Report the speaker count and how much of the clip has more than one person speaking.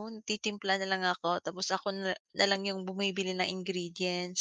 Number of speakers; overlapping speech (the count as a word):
one, no overlap